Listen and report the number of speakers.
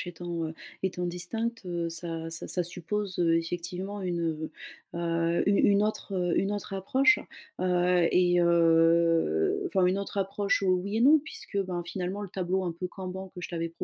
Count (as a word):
one